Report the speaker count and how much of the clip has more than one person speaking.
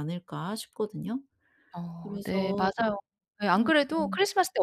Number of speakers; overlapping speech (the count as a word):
two, about 19%